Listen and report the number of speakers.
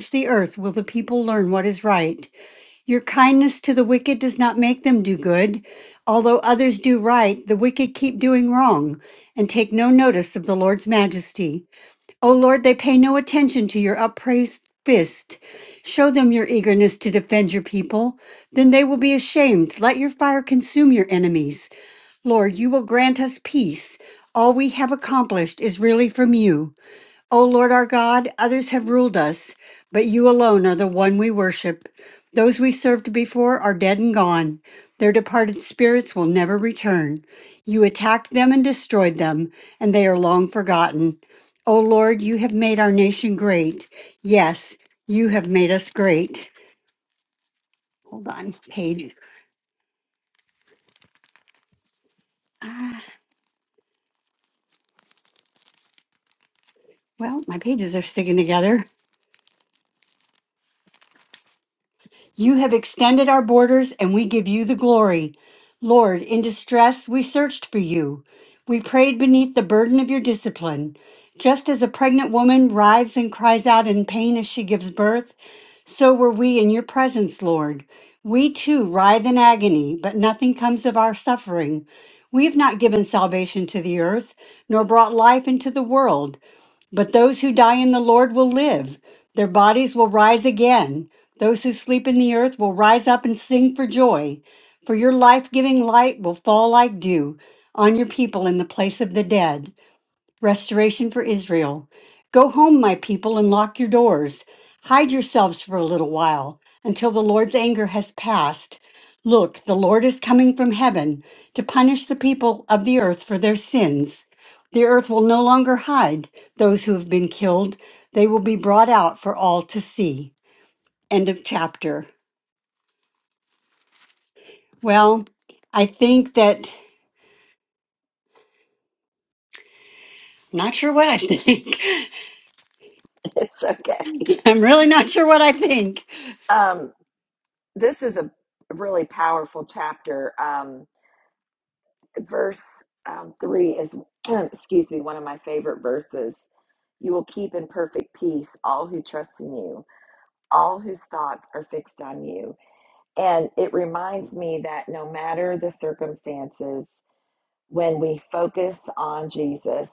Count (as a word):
two